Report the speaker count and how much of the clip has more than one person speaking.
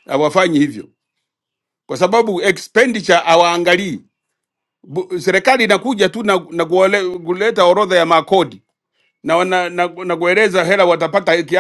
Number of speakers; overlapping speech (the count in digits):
1, no overlap